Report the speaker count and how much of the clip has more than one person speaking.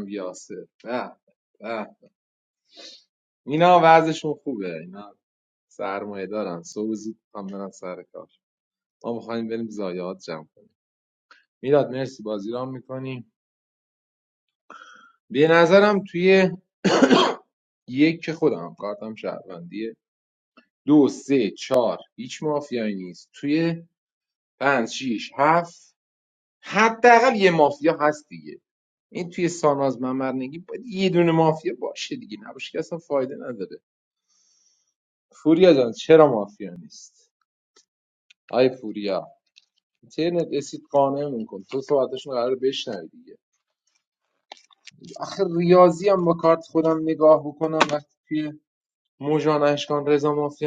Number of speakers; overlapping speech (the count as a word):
one, no overlap